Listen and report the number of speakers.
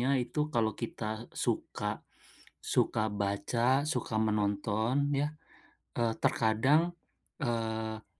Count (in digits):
1